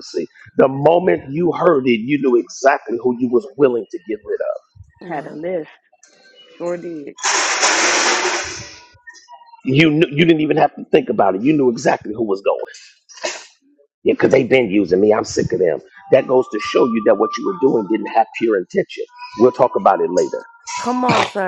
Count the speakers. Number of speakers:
three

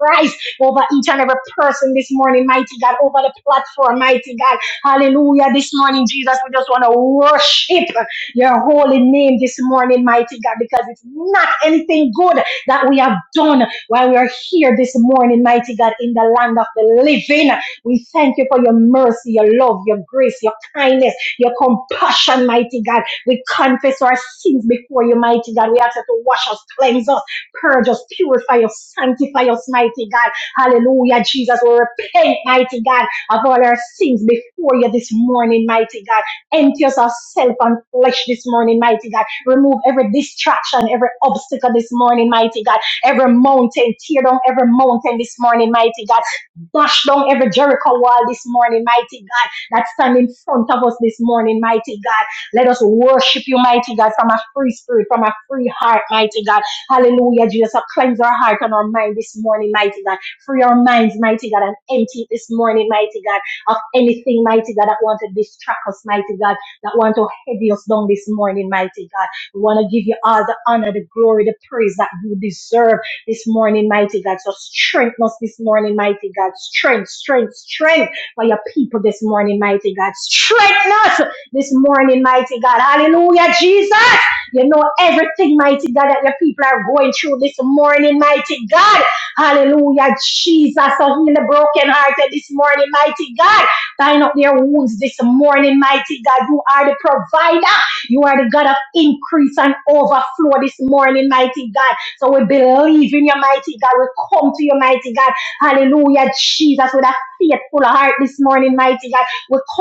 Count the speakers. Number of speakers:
one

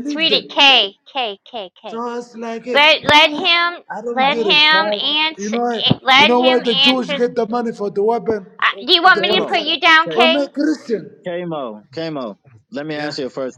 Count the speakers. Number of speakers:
three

